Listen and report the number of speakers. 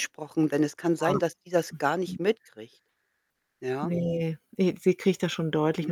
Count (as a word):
two